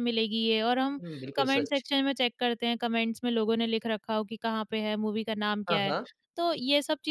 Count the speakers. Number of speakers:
2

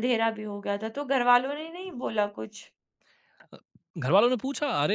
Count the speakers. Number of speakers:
2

